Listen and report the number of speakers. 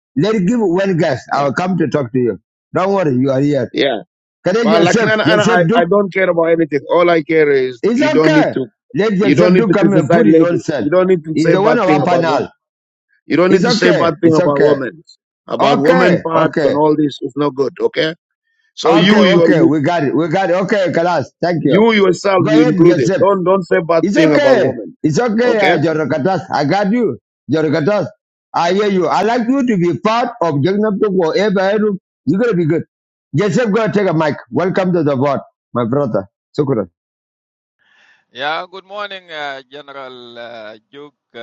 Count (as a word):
three